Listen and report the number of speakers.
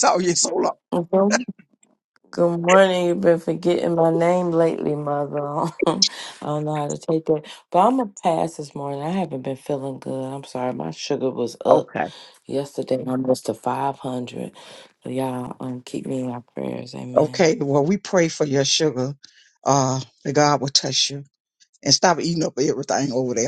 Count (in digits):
2